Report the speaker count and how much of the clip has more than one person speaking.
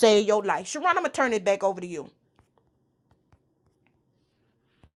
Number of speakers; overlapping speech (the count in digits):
1, no overlap